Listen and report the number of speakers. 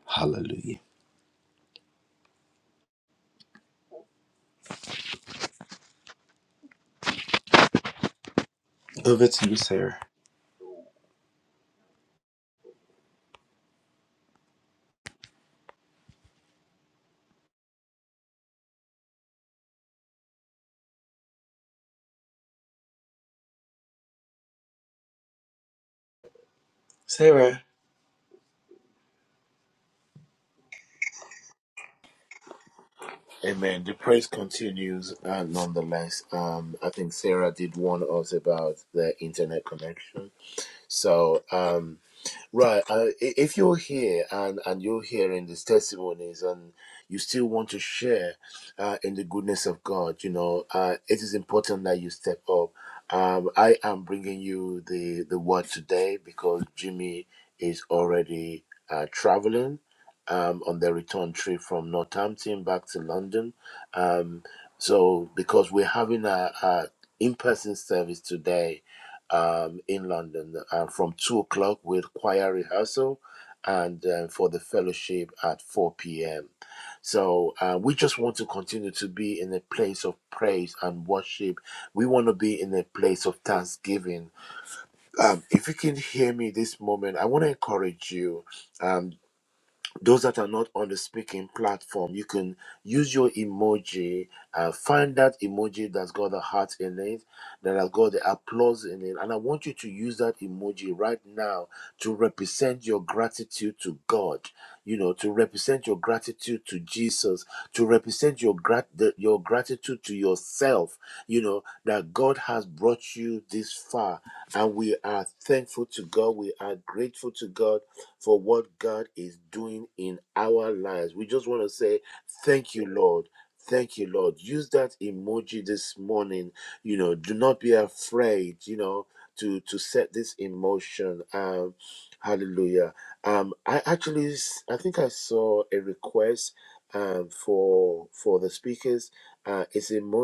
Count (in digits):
2